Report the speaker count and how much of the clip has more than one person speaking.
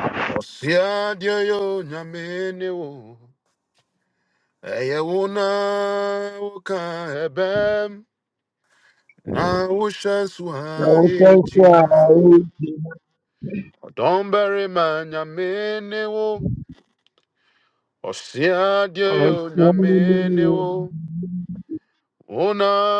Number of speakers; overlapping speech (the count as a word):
two, about 12%